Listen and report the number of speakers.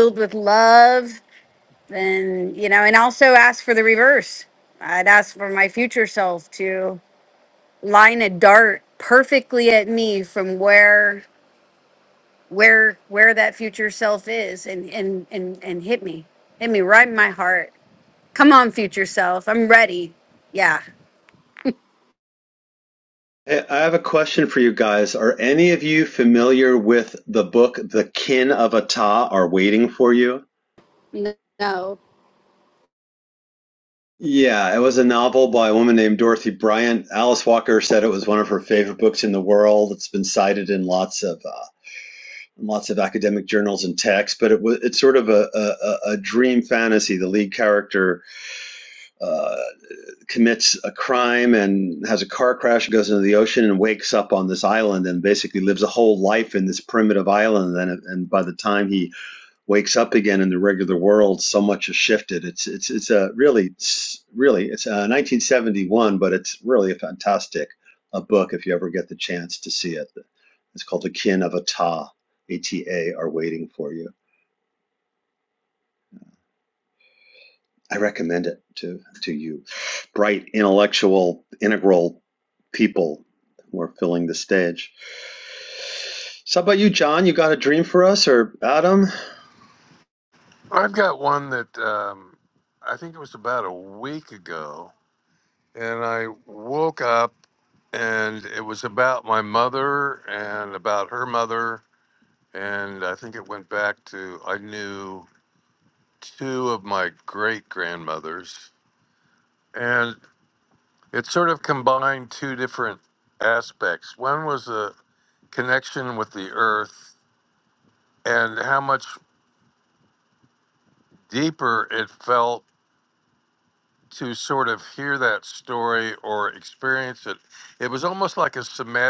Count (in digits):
3